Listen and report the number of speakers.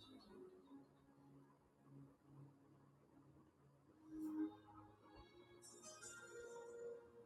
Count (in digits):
0